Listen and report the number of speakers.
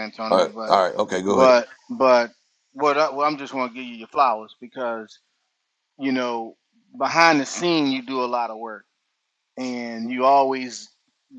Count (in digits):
2